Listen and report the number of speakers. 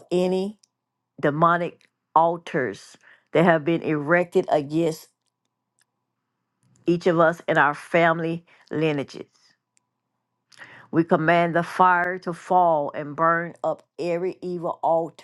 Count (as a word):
one